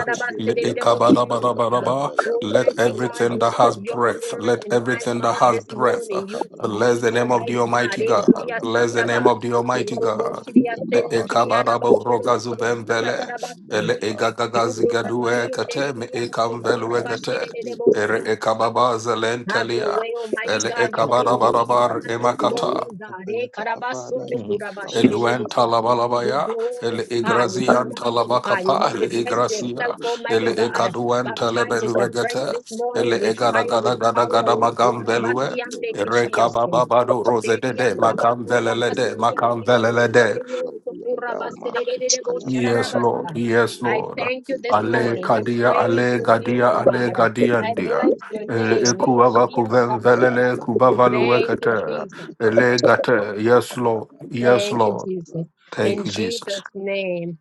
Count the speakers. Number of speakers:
3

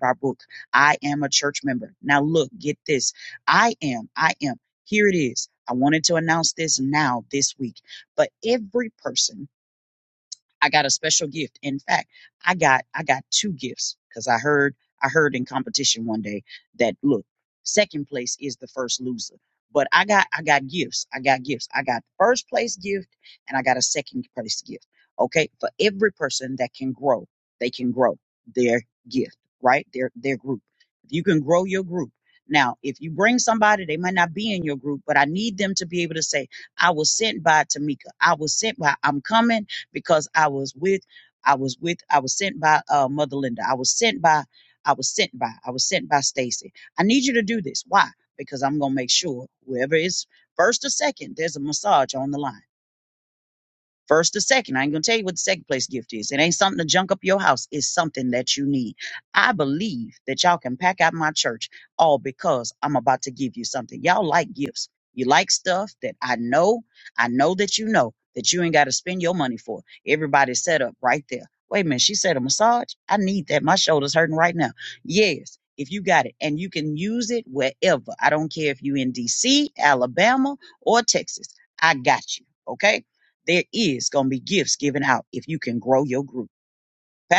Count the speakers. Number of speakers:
1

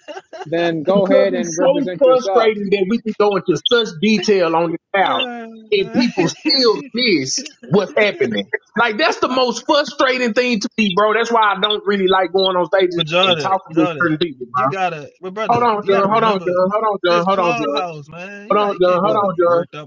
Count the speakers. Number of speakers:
3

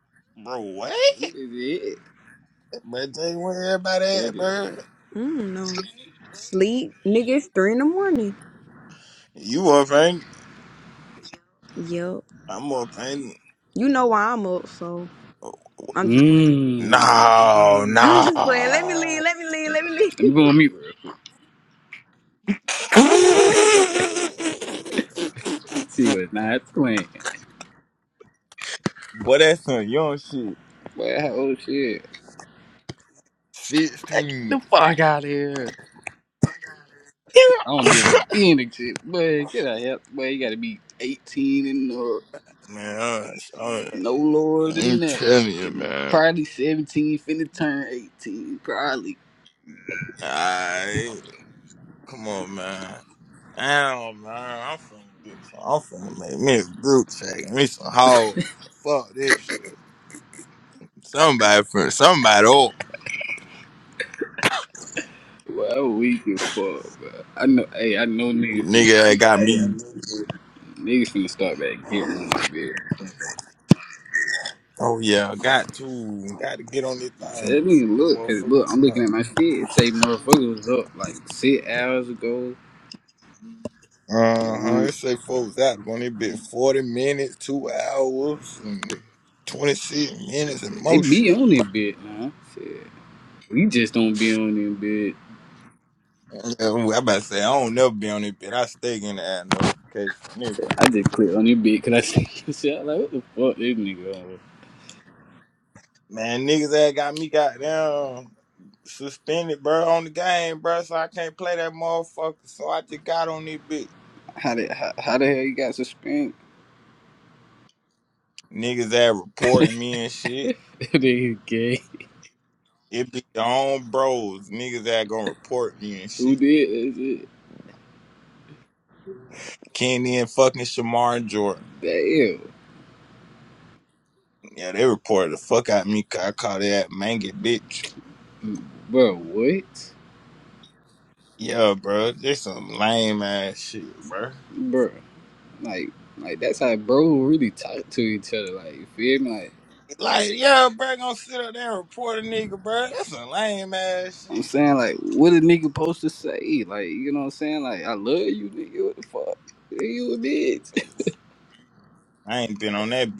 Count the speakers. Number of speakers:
3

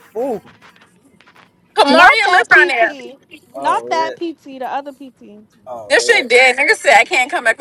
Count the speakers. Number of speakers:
3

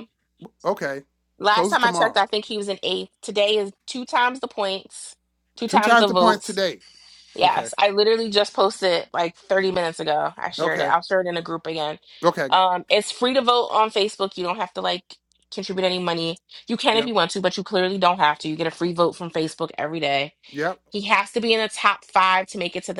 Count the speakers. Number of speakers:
2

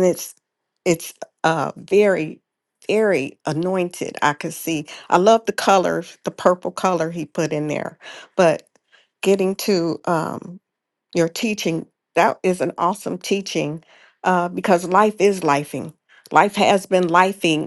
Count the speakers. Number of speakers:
1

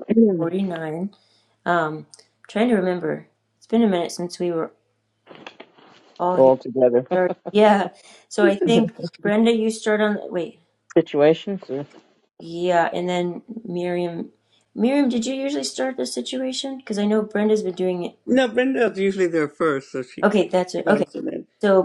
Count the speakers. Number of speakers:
3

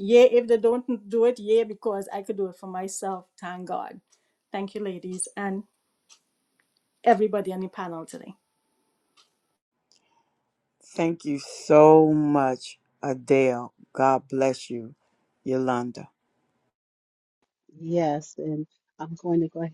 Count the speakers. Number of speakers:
3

